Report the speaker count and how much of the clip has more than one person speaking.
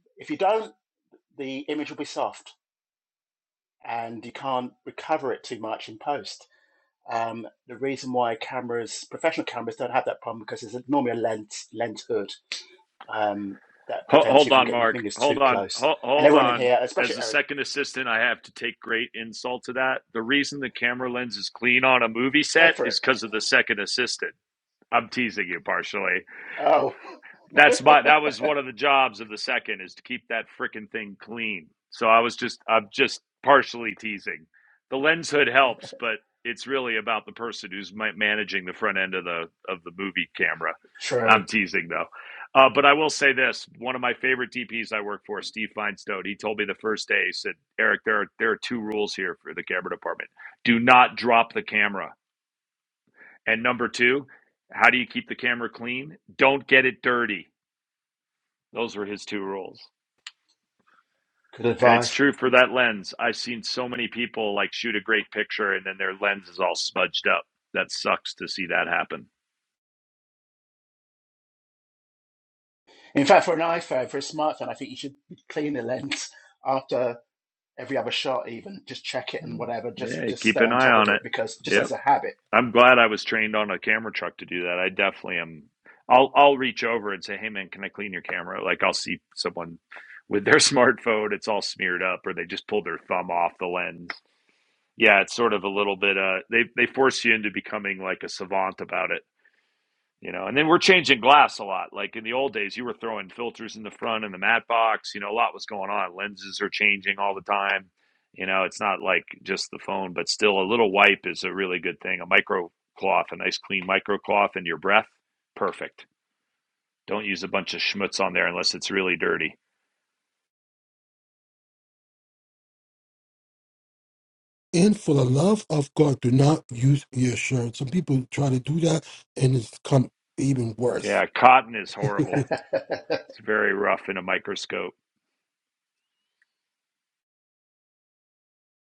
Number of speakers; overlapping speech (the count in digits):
3, about 4%